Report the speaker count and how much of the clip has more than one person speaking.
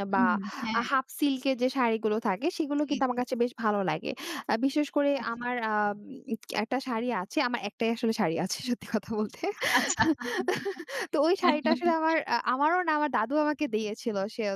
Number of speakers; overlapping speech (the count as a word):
two, about 4%